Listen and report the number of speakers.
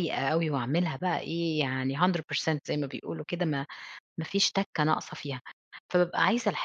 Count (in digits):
1